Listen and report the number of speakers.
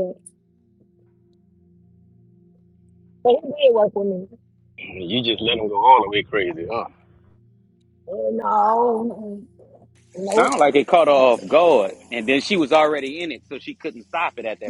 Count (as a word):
three